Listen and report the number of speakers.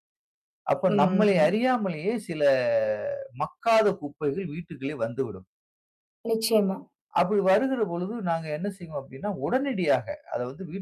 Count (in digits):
2